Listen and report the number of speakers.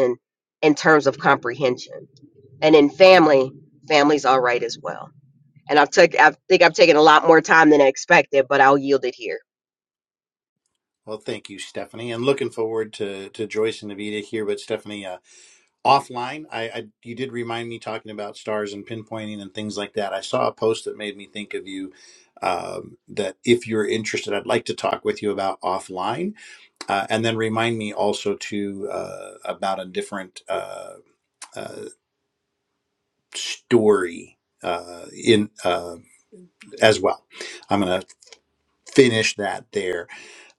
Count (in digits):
2